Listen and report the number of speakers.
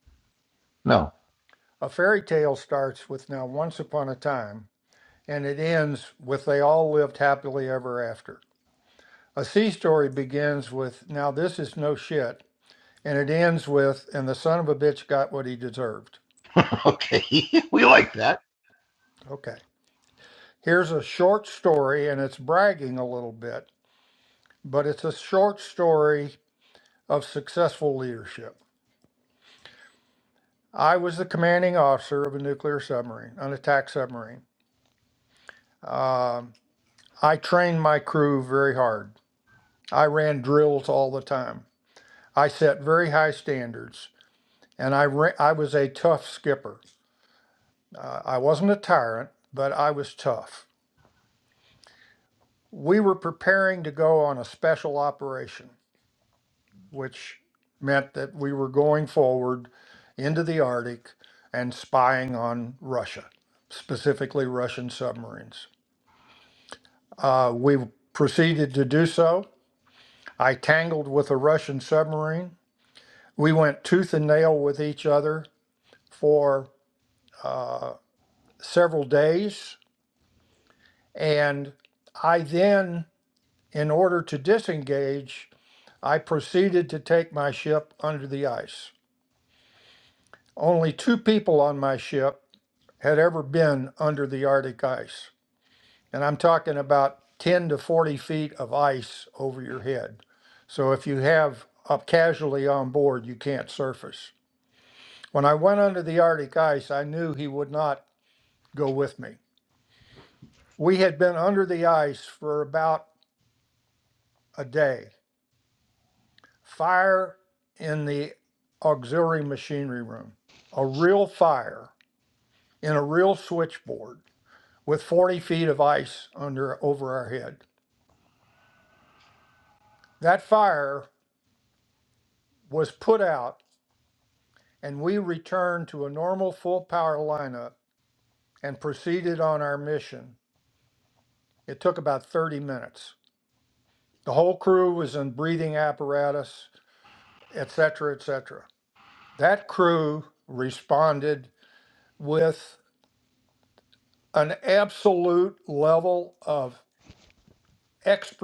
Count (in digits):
2